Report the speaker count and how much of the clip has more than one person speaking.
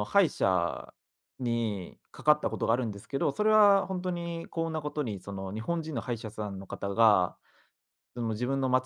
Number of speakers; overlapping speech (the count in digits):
1, no overlap